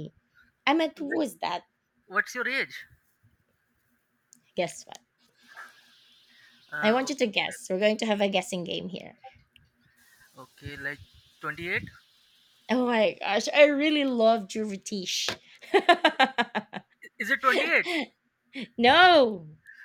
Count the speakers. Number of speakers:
2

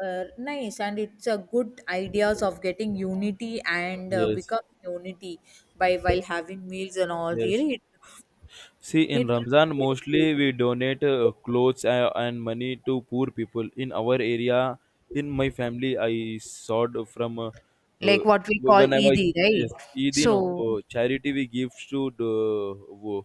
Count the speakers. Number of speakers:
2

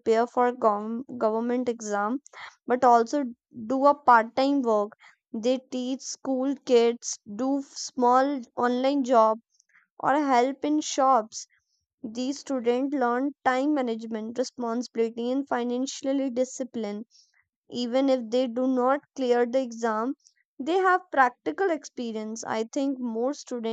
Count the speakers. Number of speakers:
1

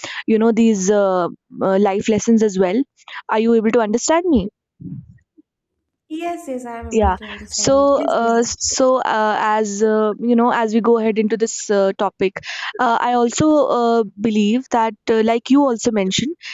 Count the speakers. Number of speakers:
2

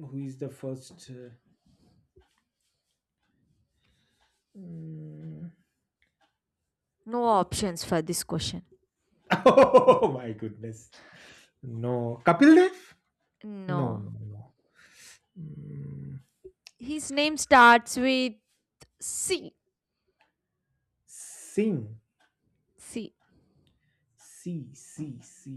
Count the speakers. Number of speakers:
2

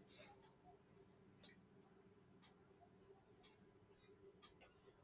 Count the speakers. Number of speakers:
0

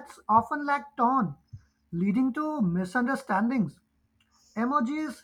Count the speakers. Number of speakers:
1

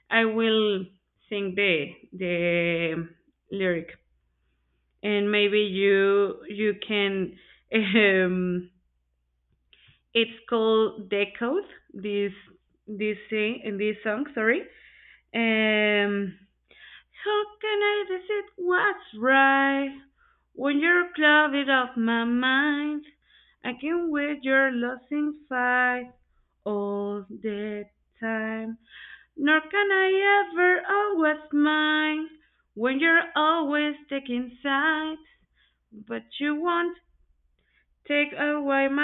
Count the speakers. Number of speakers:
1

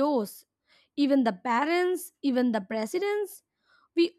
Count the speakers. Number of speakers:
1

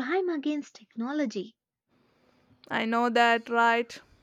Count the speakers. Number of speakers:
2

